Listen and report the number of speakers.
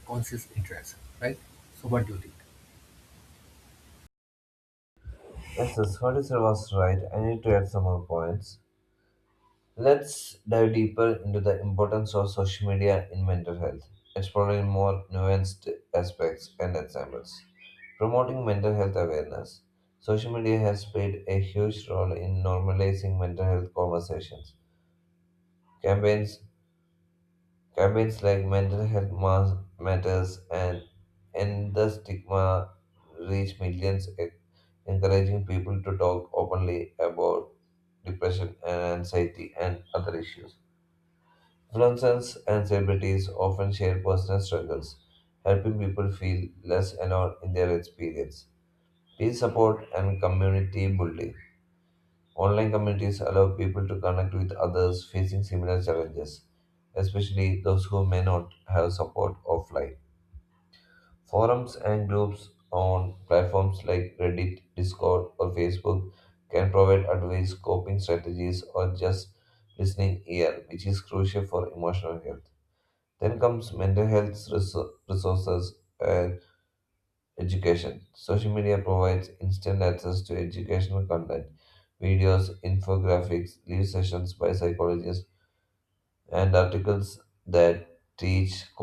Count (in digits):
2